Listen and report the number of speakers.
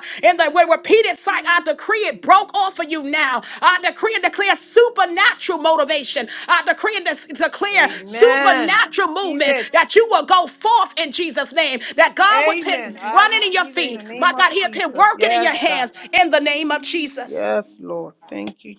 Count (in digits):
2